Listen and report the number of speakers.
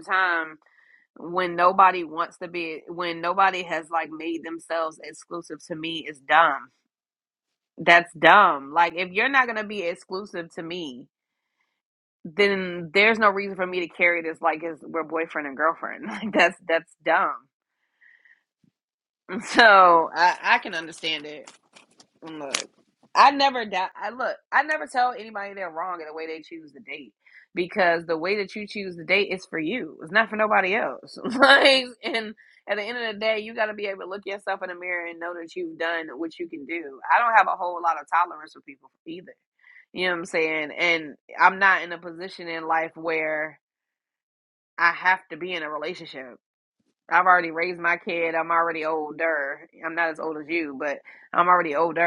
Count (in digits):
1